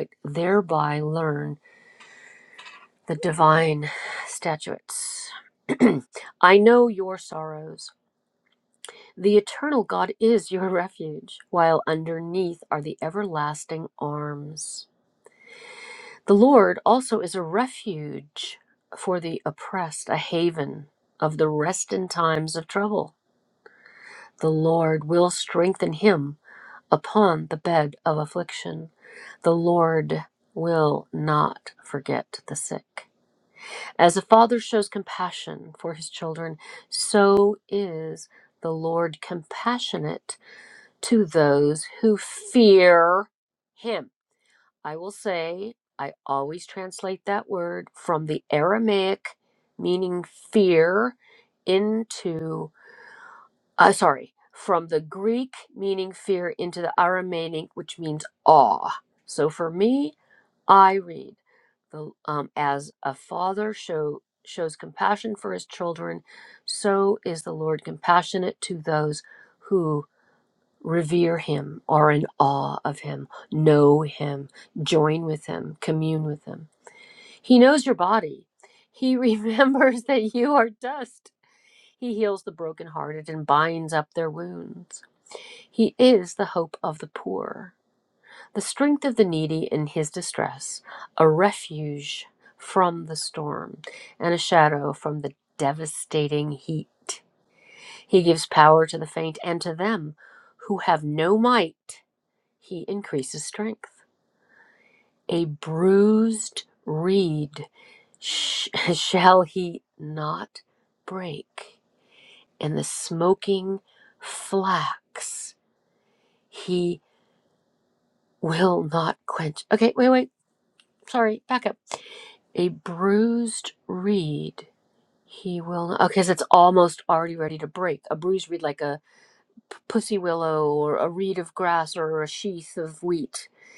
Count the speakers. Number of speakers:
1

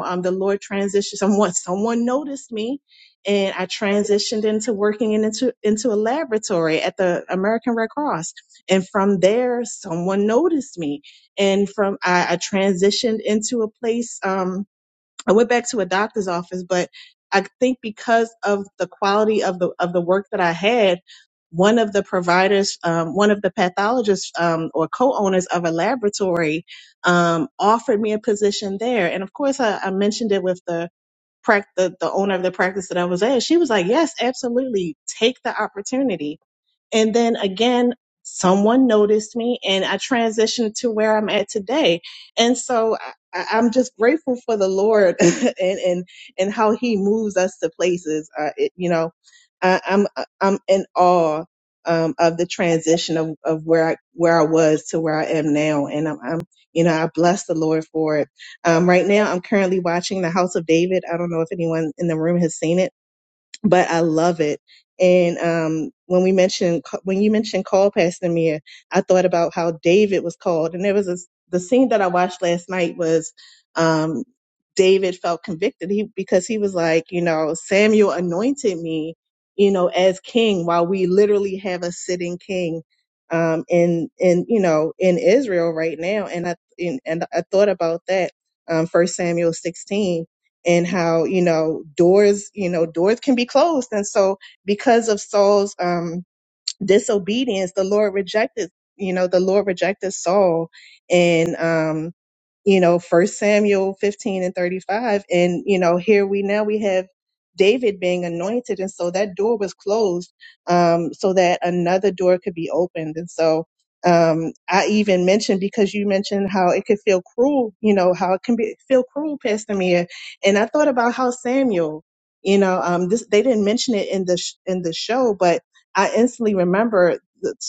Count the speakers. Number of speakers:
1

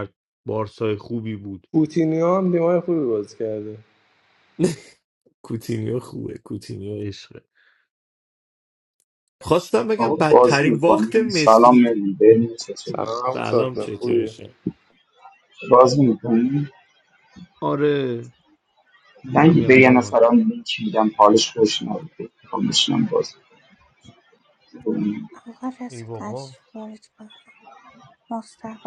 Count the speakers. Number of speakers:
4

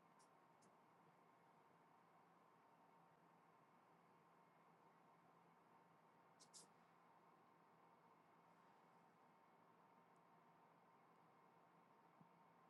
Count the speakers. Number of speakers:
0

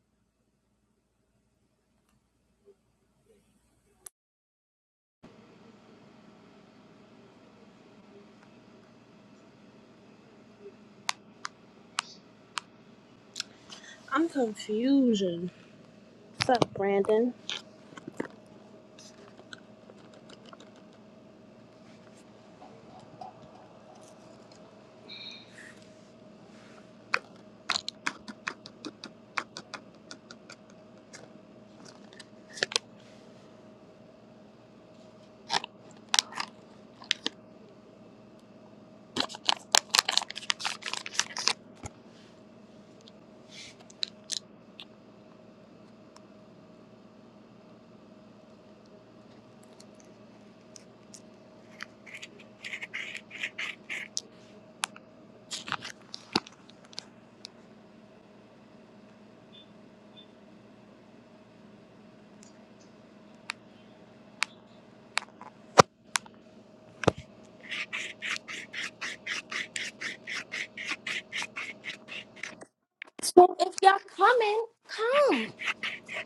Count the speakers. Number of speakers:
2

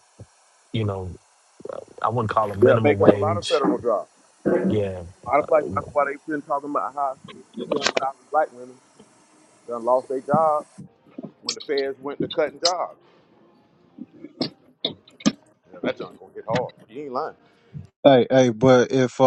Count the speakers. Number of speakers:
3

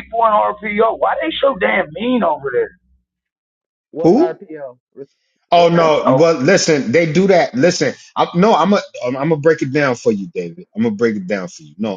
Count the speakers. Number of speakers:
3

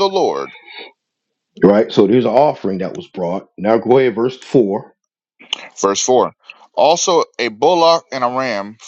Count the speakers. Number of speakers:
2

